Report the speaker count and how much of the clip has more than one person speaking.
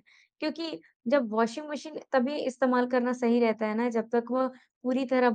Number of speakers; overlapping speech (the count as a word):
one, no overlap